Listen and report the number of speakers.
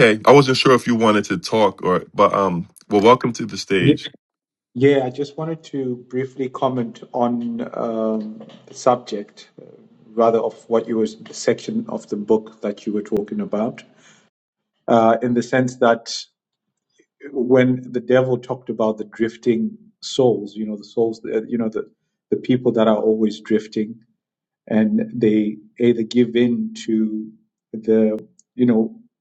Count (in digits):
2